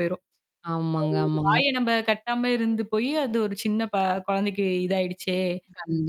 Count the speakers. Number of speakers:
2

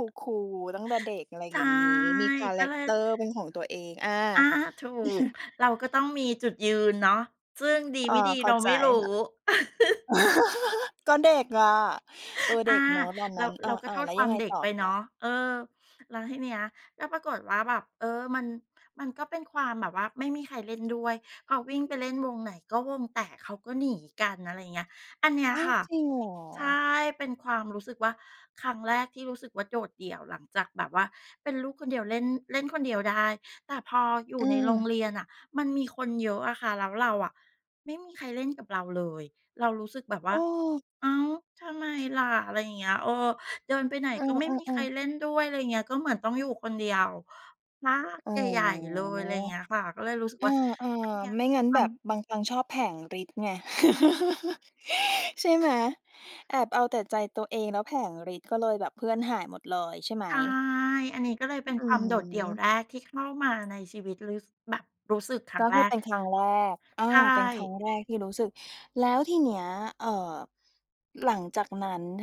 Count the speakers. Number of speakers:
2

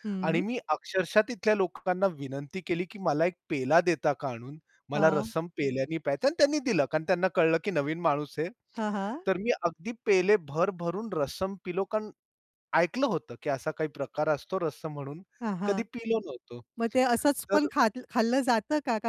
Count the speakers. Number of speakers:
2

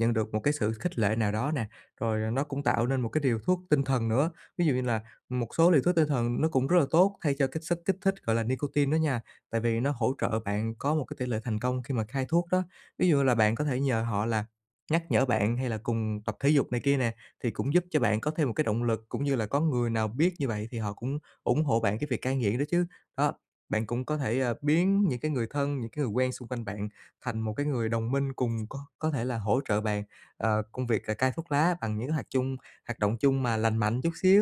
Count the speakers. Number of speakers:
1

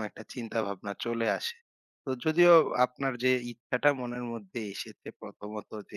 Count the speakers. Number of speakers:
1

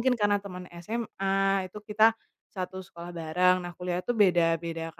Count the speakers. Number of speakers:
1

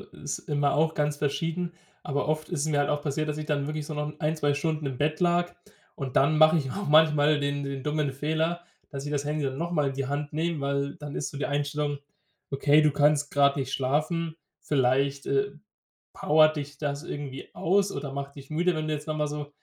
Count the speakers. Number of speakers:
1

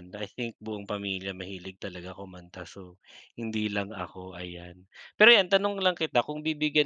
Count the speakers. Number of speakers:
1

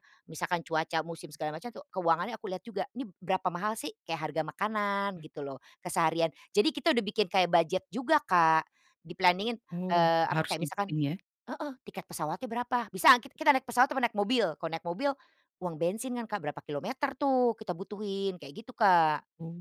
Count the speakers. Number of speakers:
2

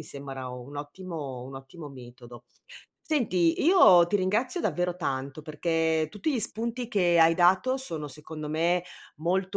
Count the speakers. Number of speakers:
1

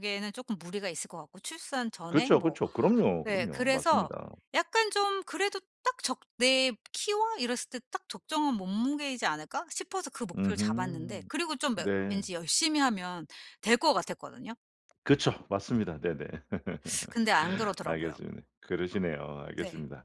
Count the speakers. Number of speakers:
2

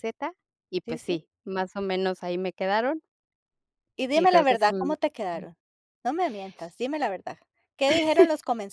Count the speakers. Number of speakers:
2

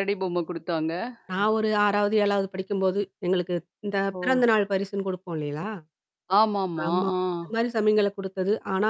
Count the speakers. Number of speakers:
2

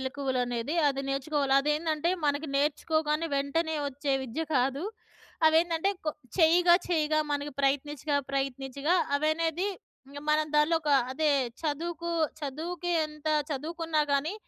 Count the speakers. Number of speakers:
1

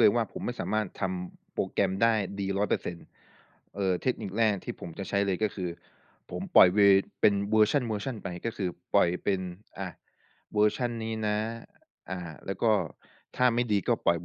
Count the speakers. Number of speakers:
1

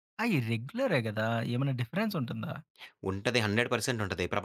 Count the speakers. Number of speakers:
2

